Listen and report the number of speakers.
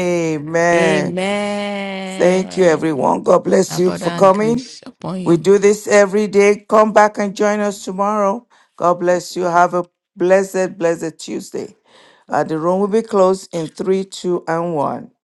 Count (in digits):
2